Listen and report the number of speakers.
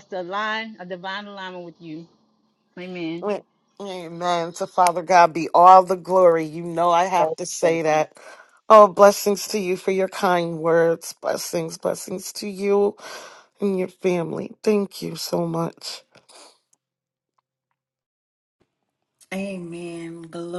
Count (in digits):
3